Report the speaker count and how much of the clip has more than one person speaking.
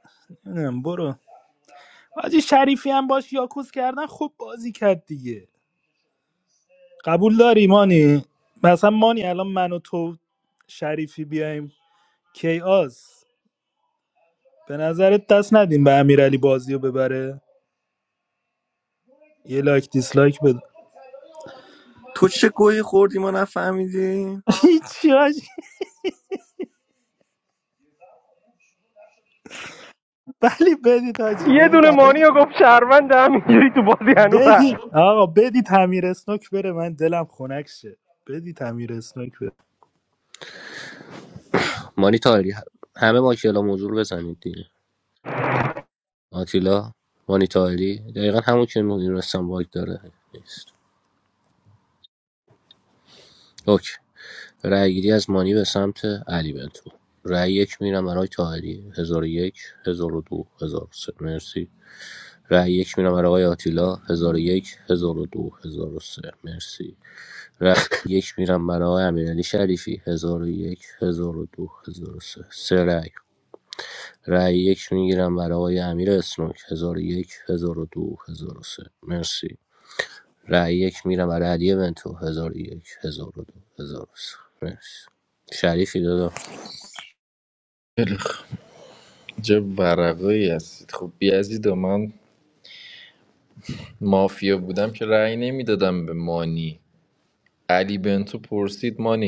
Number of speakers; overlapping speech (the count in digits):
5, about 1%